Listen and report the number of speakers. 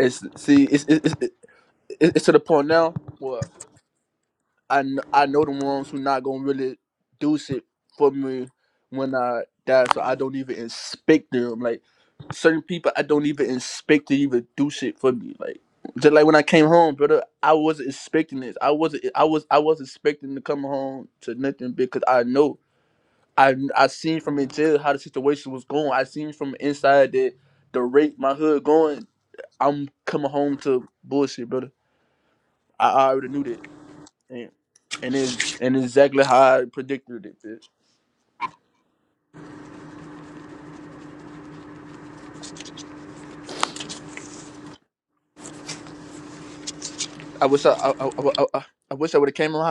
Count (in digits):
1